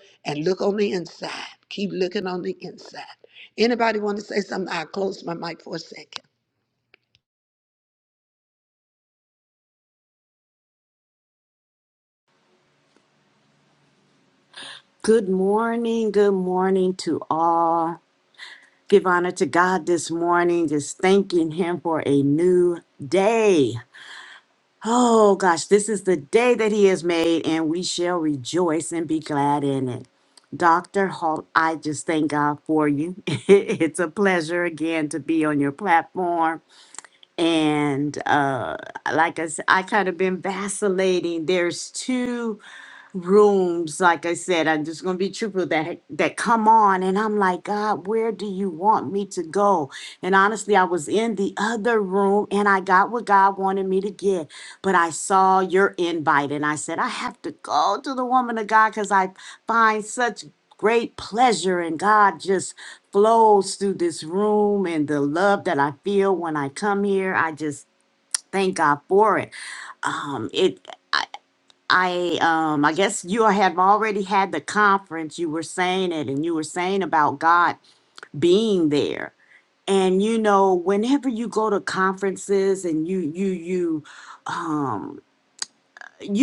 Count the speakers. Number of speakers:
2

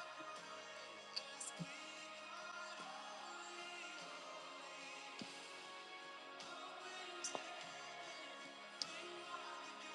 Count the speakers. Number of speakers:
0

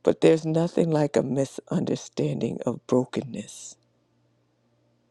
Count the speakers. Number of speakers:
1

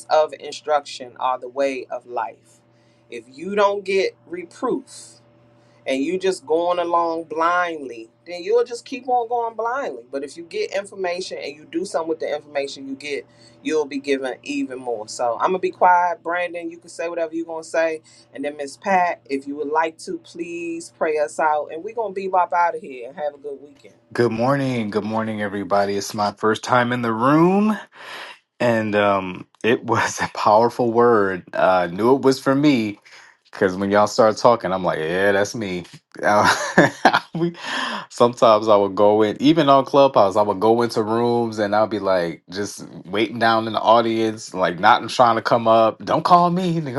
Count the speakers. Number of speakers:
2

